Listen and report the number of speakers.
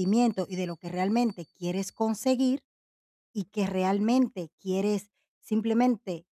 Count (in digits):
1